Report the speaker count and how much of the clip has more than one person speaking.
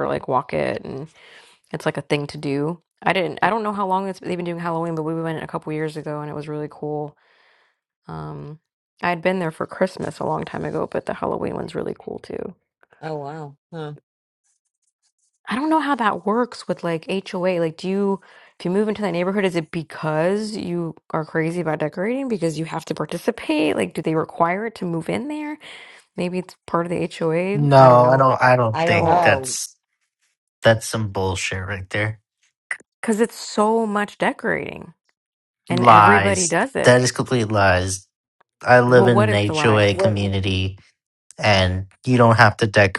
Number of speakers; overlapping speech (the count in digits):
3, about 9%